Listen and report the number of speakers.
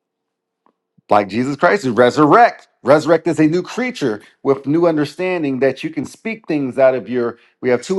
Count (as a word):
one